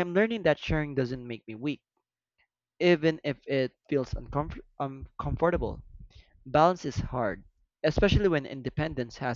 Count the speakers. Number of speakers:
one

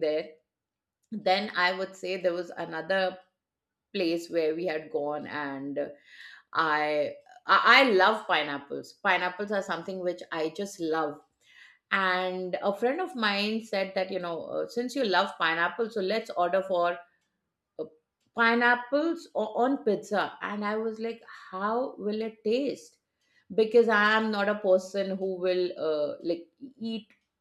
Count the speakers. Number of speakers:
one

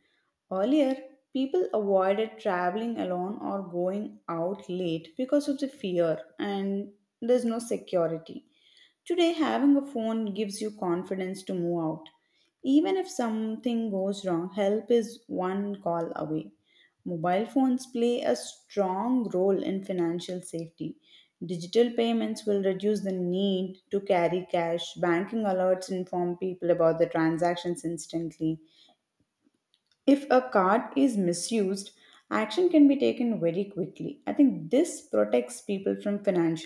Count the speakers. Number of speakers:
one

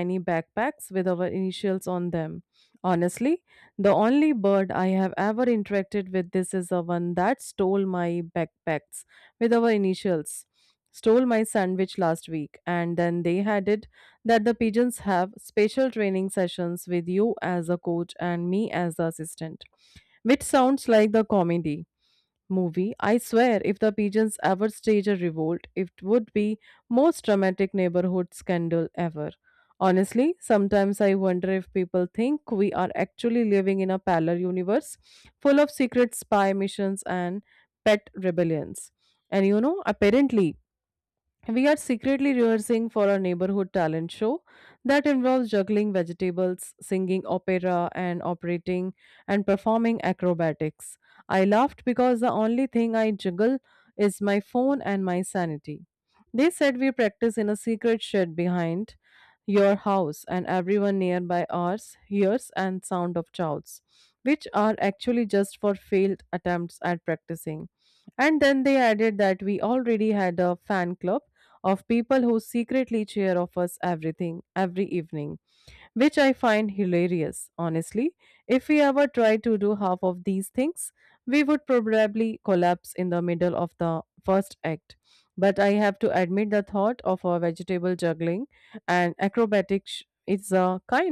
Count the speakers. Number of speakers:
one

